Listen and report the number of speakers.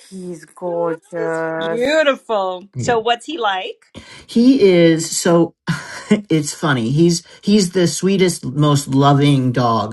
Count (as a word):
three